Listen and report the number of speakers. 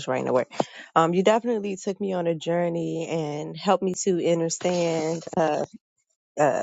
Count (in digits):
1